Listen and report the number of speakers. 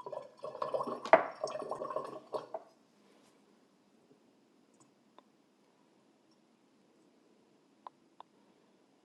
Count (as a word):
zero